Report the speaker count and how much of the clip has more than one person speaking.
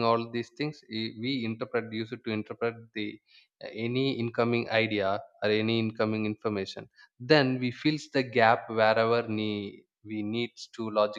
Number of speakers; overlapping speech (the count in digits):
1, no overlap